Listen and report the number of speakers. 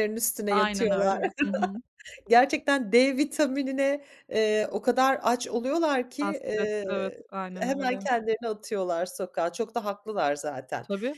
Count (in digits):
2